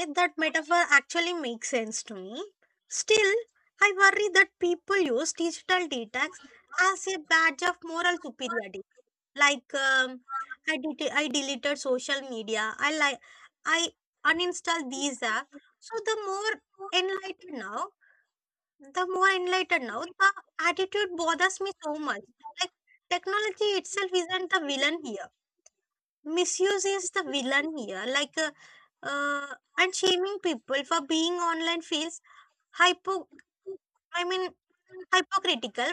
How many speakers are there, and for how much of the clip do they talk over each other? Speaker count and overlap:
one, no overlap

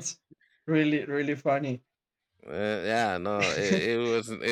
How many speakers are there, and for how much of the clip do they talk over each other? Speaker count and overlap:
two, no overlap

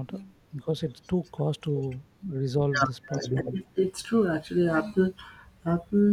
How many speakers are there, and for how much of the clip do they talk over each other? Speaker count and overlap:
two, about 10%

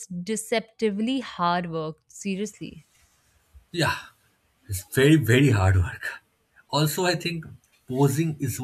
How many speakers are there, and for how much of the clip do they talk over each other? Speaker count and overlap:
two, no overlap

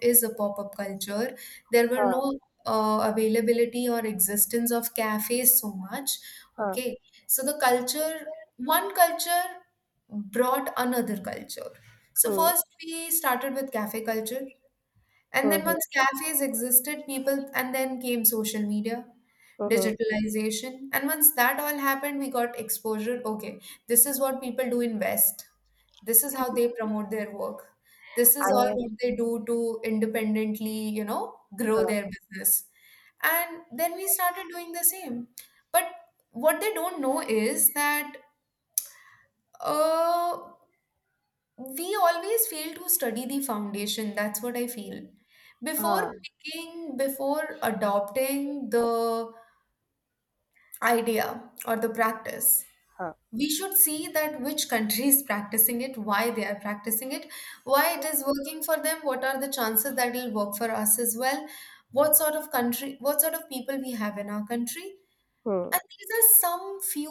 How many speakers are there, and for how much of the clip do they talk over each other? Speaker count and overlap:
two, about 3%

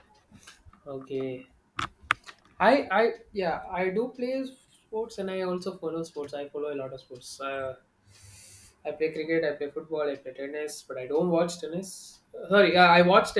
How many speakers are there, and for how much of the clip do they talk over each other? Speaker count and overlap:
one, no overlap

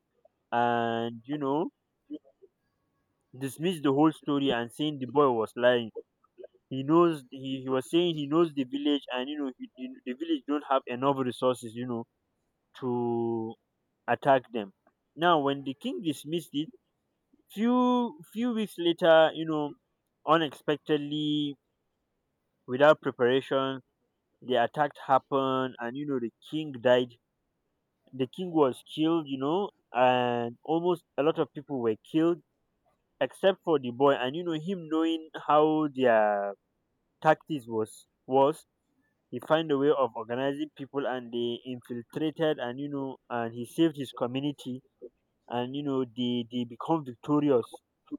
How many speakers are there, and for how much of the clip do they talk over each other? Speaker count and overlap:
one, no overlap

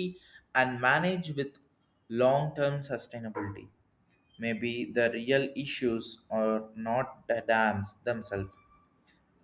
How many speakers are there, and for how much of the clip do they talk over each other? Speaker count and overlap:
one, no overlap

